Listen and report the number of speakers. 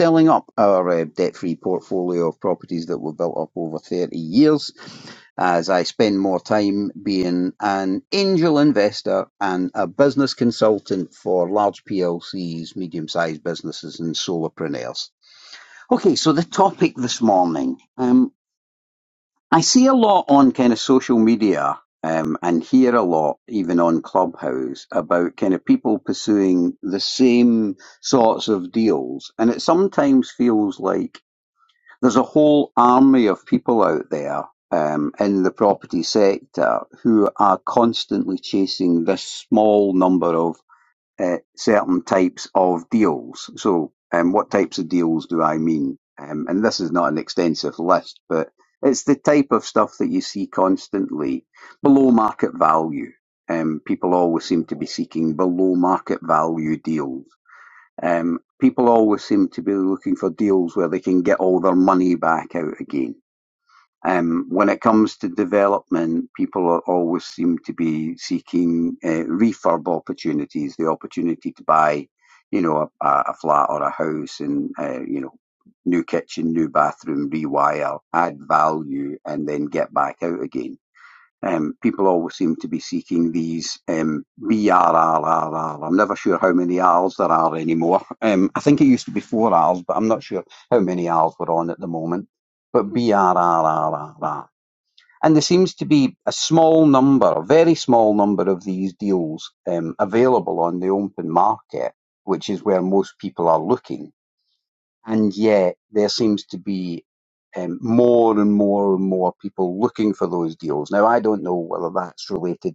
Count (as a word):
one